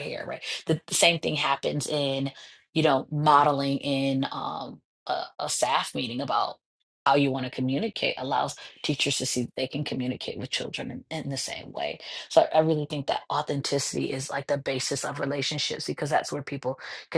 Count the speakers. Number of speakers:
1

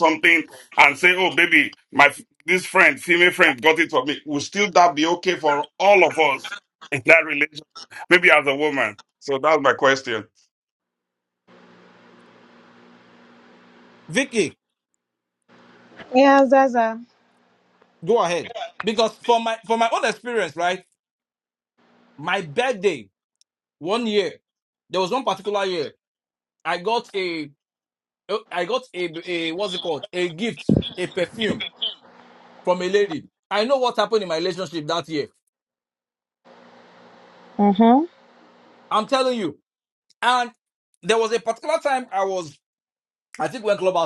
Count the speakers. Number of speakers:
3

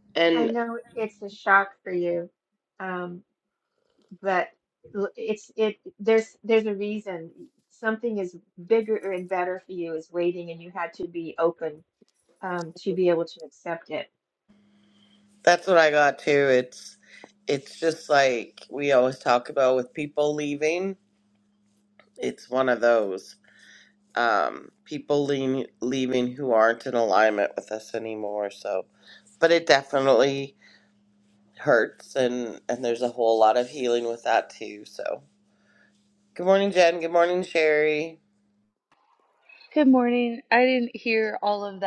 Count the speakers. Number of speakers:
3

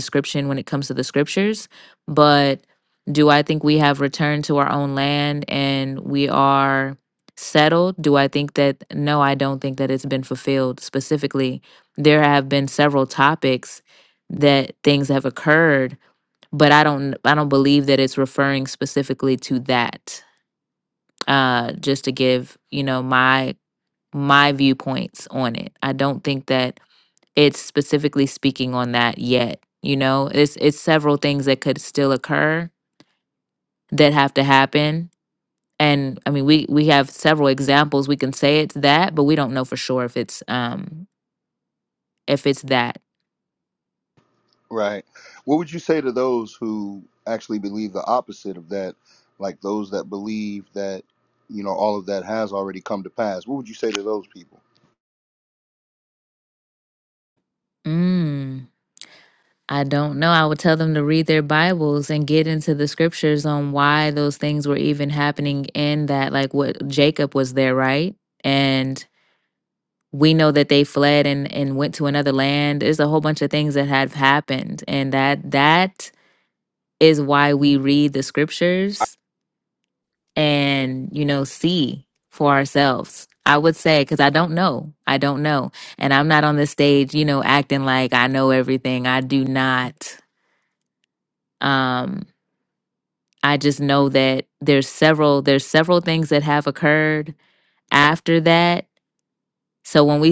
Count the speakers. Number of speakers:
2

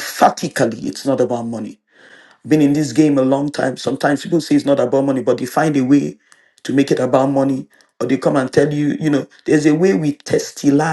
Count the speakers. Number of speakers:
1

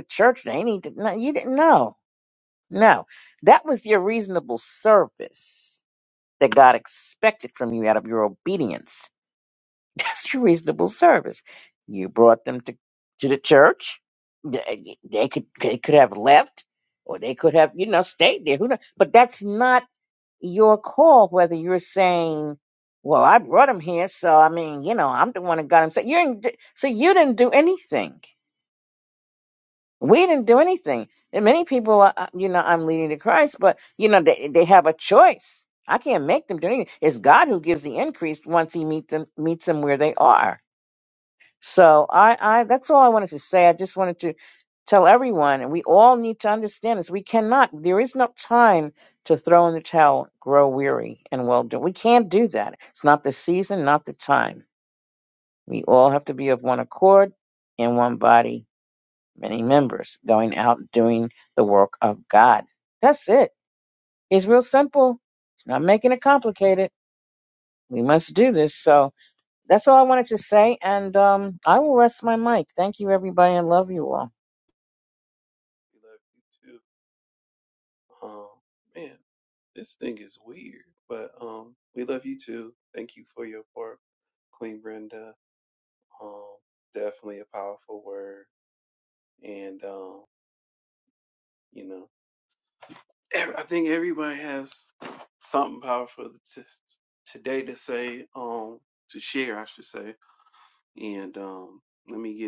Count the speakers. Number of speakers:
2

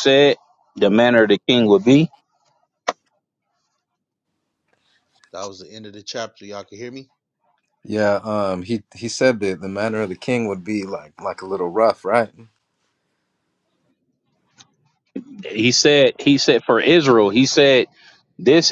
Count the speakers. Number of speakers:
3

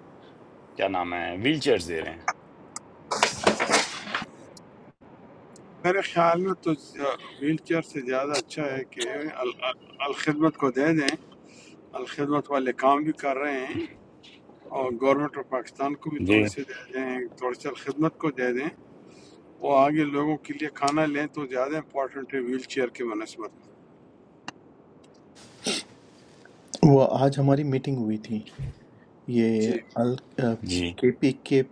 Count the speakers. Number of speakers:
3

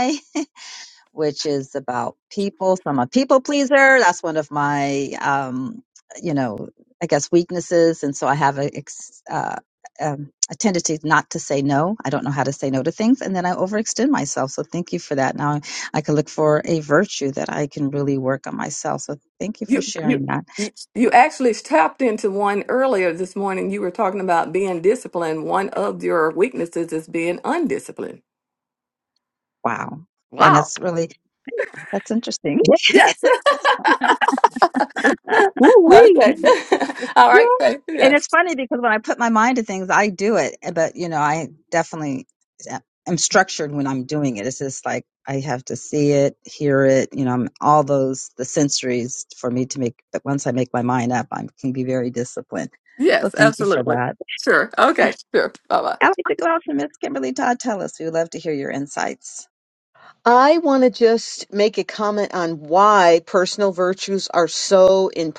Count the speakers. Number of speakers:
3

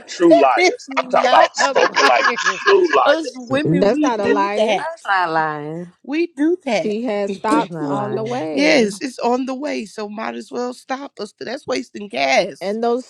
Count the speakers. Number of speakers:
4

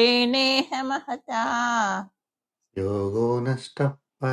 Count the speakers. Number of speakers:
2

